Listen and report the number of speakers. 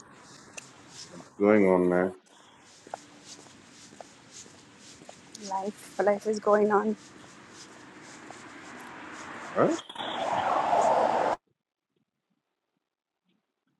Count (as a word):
two